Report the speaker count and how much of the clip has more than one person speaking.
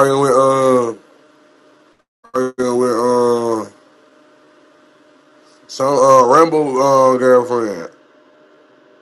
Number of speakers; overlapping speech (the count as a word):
one, no overlap